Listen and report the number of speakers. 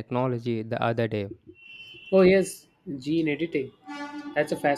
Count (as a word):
two